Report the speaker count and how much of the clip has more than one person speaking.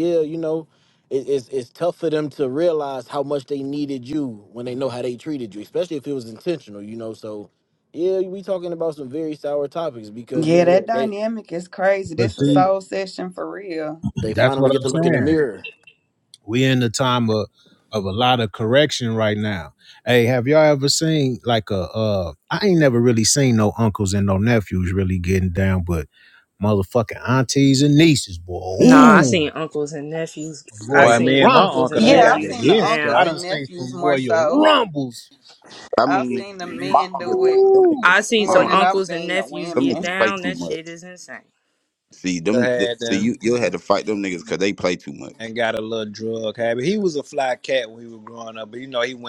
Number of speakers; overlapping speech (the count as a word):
six, about 25%